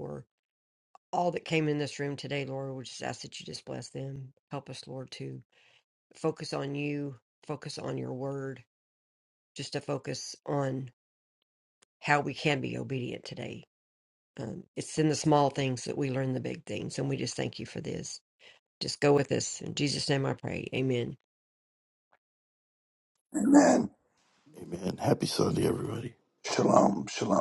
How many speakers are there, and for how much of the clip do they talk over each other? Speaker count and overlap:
three, no overlap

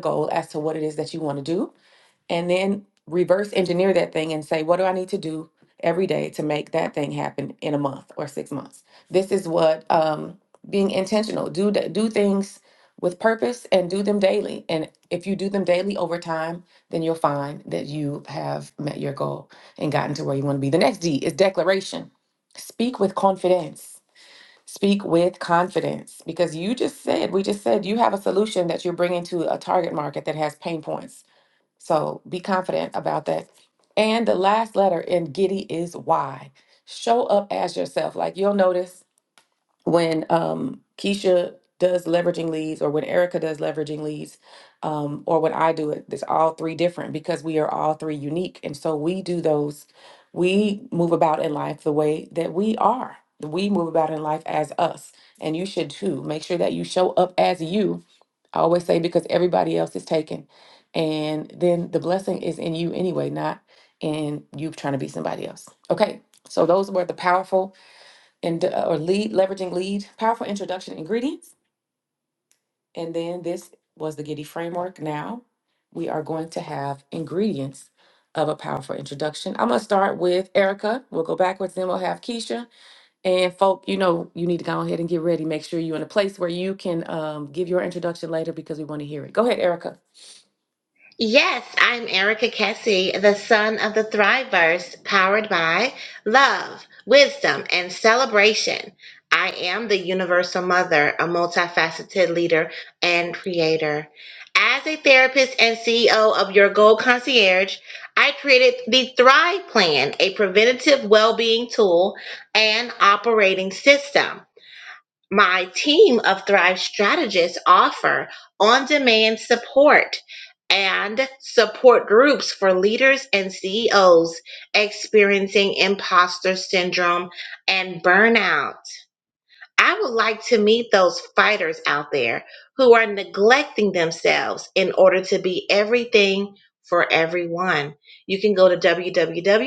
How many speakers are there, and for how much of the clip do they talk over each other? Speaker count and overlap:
two, no overlap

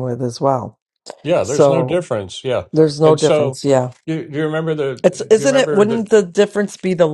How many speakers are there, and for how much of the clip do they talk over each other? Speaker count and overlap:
two, about 21%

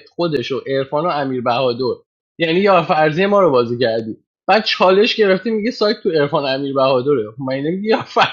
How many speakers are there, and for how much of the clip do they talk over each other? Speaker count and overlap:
one, no overlap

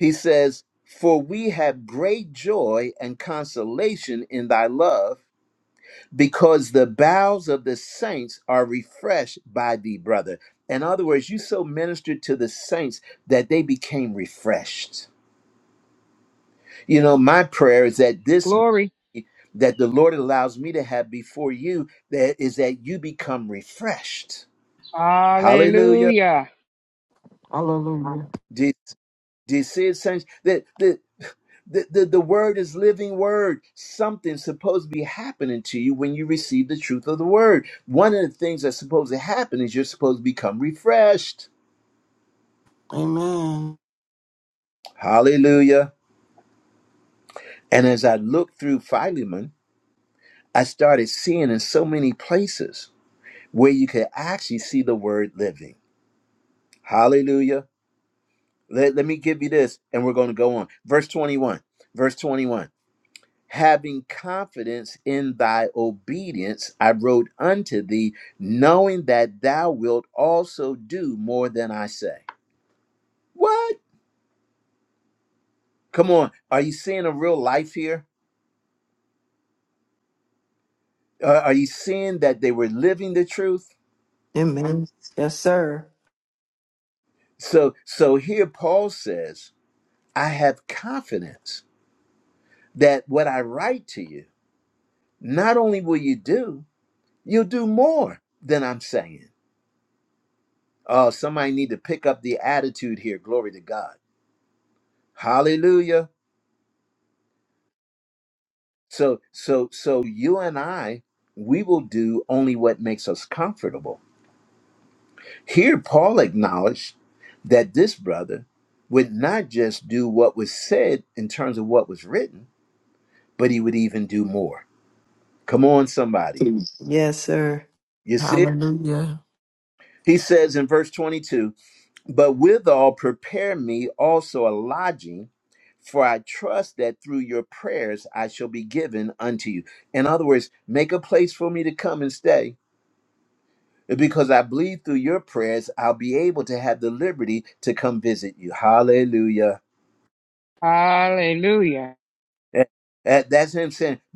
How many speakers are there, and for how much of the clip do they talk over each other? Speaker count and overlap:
four, about 1%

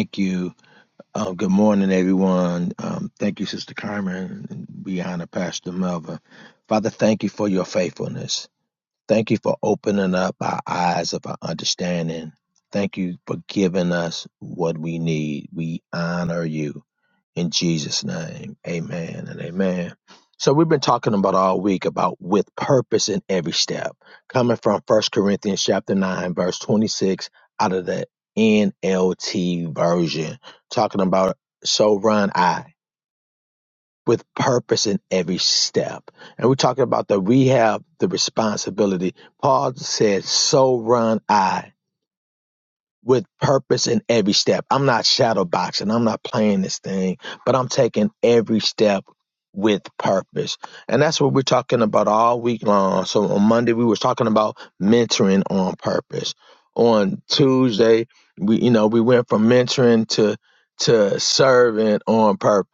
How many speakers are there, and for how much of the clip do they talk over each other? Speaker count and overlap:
one, no overlap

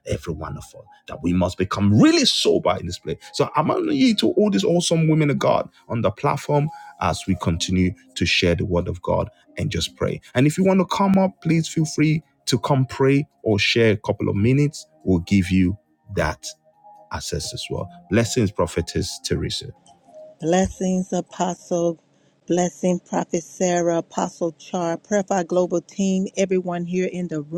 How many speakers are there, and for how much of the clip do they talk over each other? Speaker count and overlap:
two, no overlap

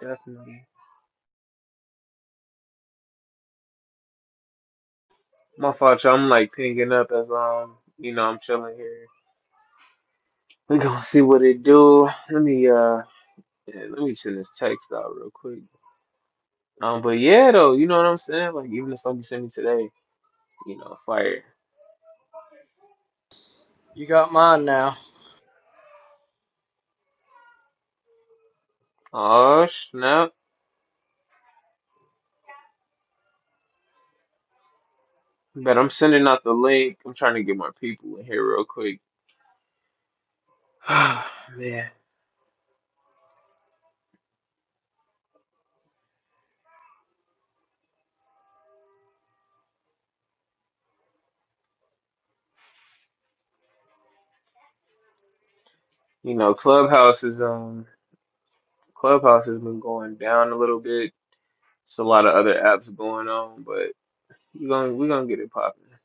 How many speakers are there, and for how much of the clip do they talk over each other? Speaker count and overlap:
two, no overlap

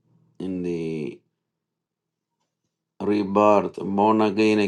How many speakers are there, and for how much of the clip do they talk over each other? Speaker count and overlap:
one, no overlap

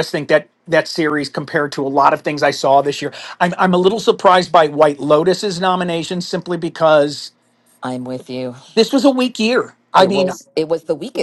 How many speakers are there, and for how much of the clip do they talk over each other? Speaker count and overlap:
two, about 3%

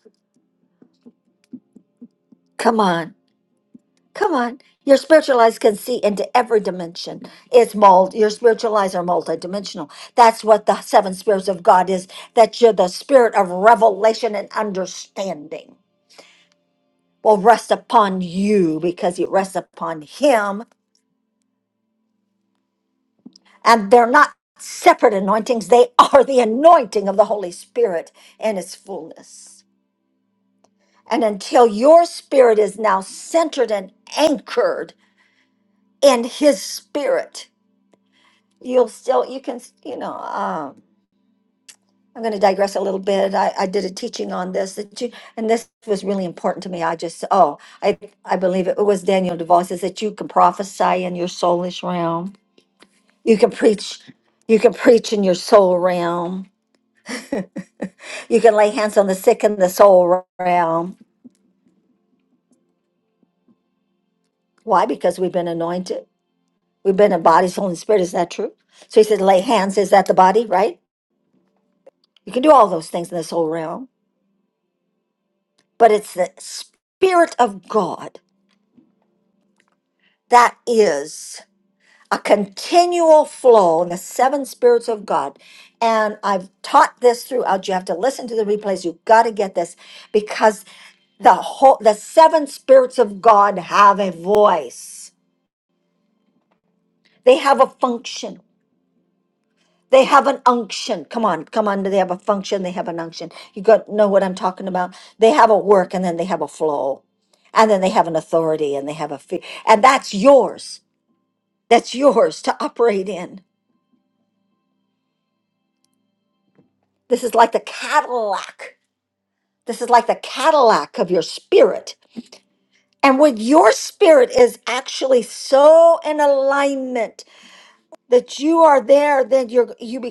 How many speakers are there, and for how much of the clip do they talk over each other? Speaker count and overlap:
one, no overlap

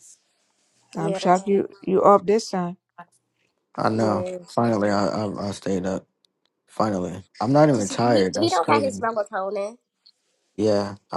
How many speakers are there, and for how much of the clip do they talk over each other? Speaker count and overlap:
three, about 17%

